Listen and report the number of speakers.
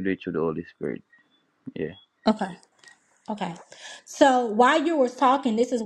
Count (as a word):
two